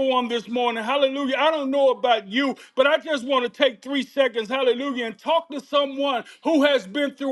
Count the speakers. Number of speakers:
one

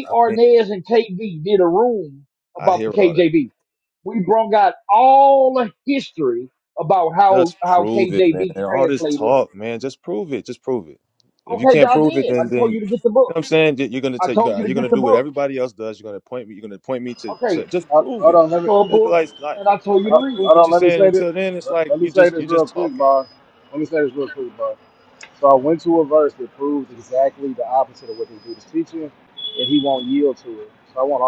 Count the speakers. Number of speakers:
three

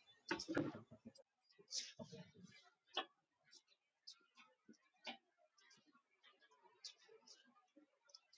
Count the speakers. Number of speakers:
zero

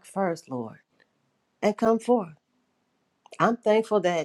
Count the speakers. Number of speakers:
one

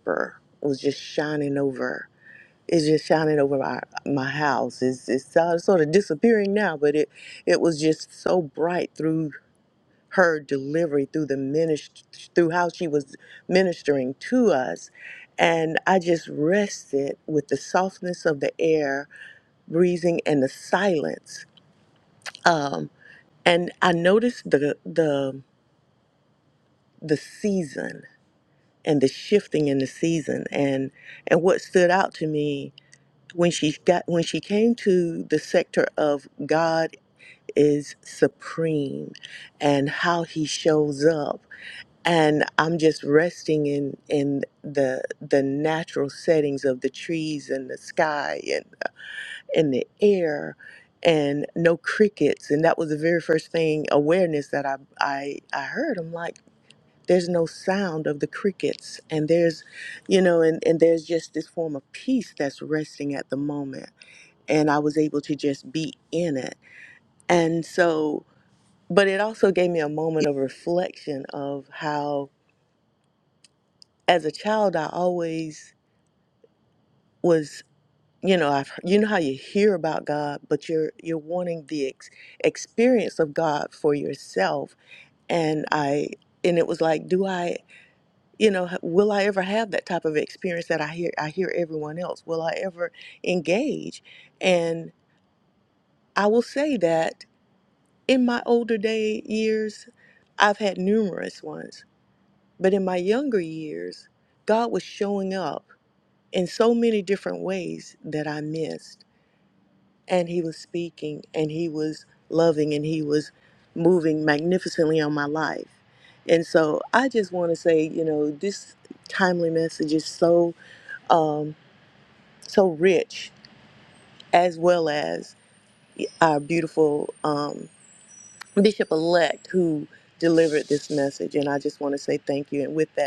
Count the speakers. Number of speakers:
one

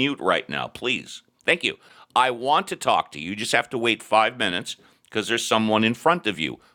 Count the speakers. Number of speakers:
one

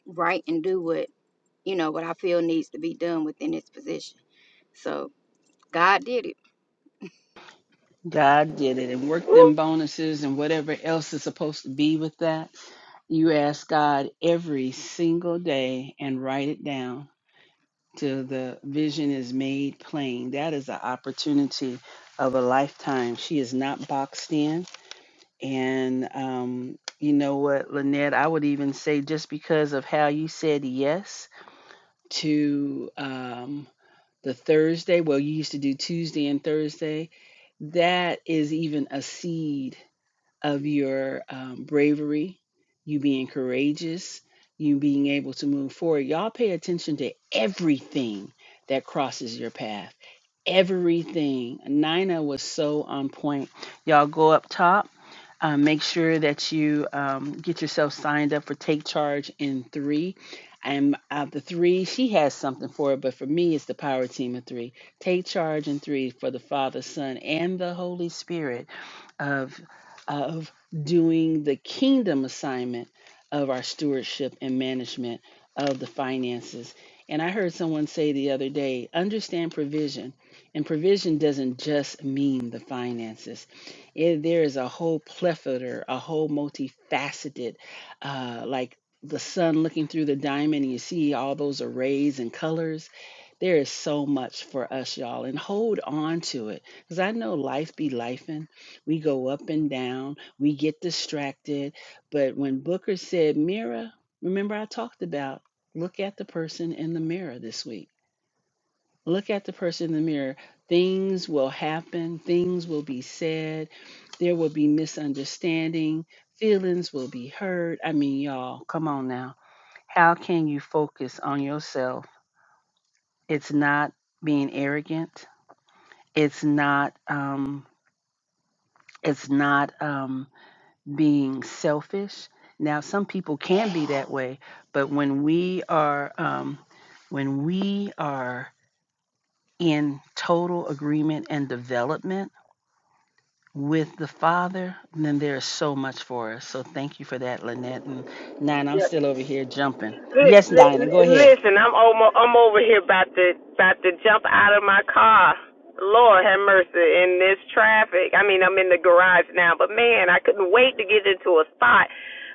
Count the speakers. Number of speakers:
three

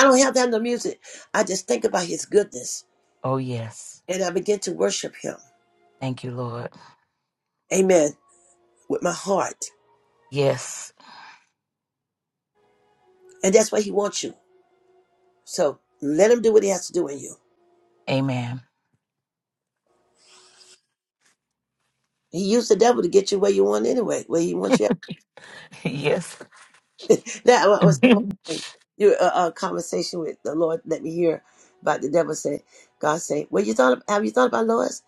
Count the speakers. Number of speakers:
two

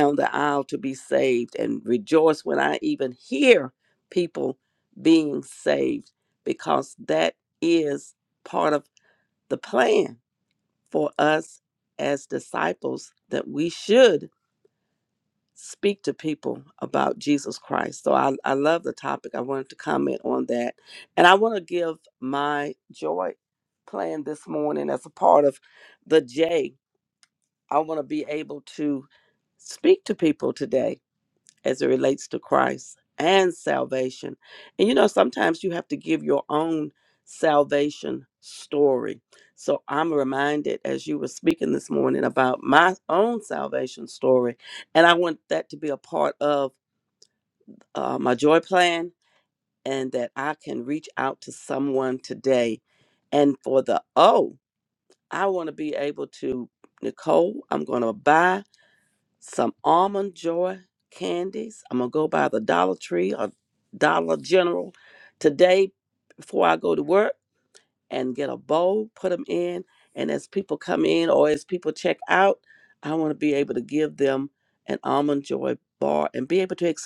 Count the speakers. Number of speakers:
one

